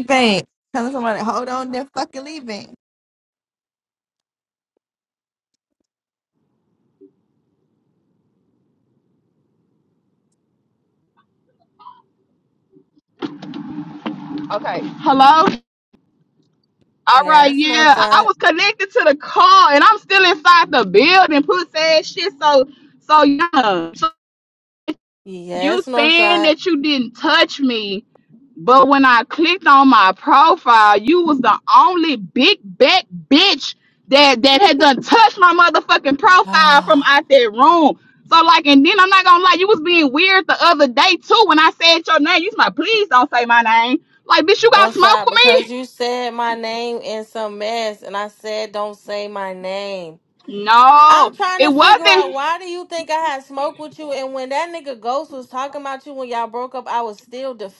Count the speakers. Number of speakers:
3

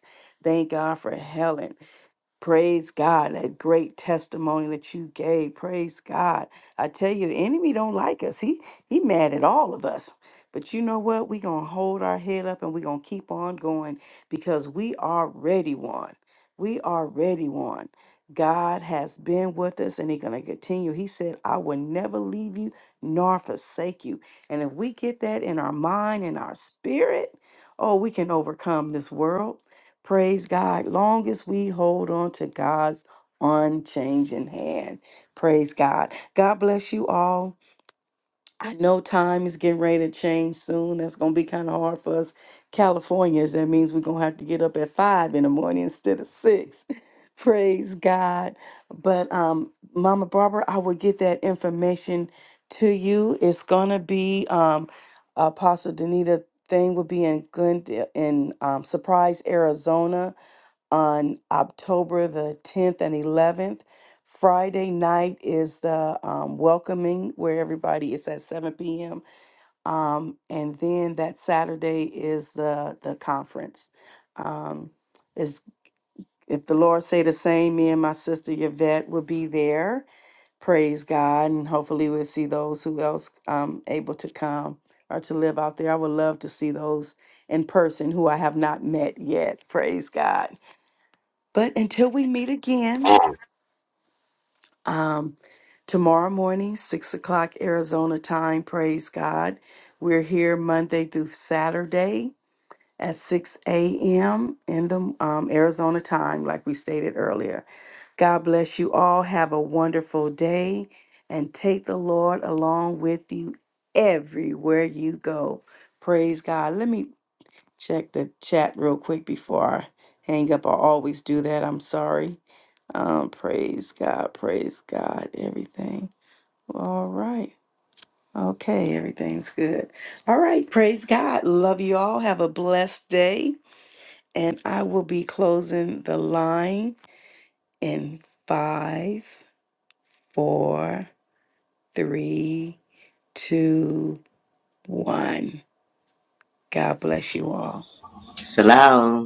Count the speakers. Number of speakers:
2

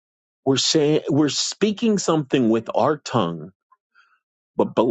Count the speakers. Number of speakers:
1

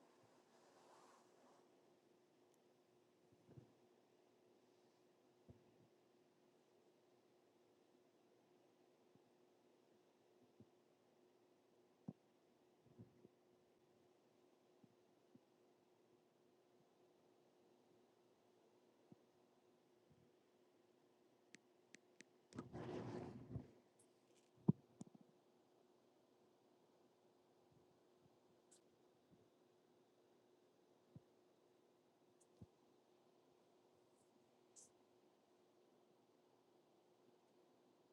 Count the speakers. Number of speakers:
0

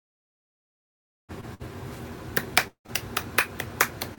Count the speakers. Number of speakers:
0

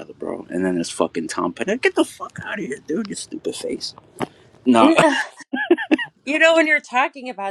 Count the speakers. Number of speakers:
2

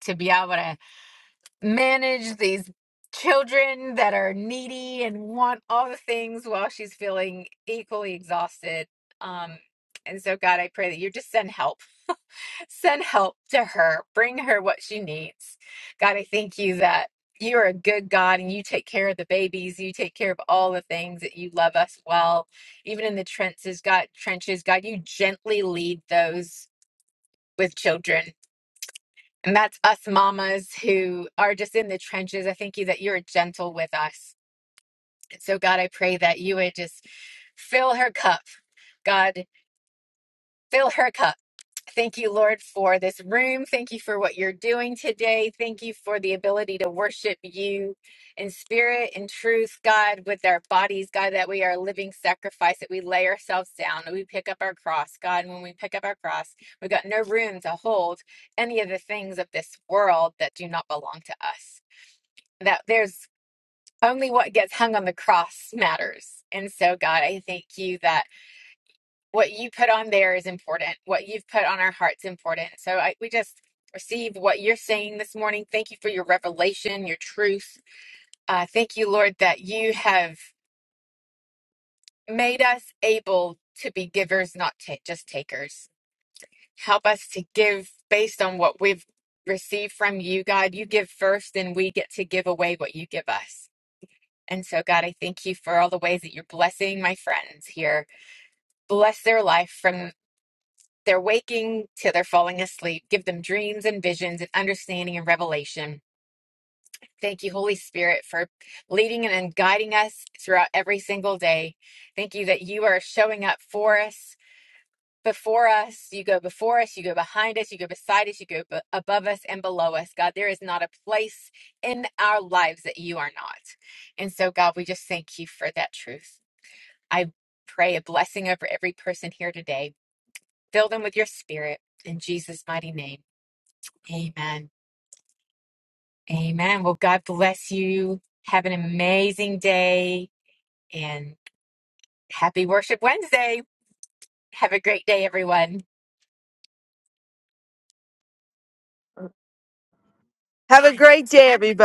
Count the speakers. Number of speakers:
2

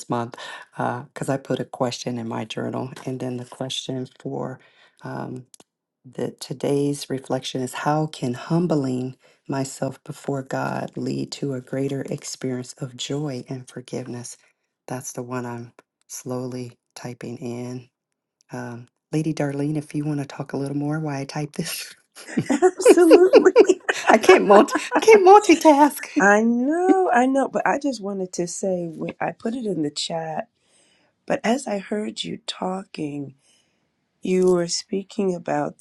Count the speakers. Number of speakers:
2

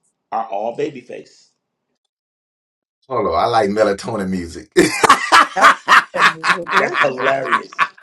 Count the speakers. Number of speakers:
3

